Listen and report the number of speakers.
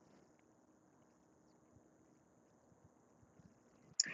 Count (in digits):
0